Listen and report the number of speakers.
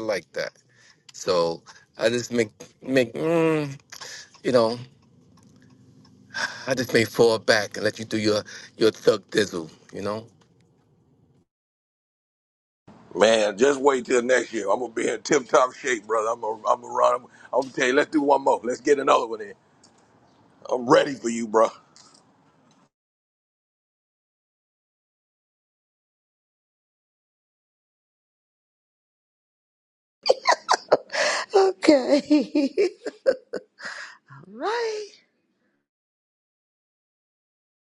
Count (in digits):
3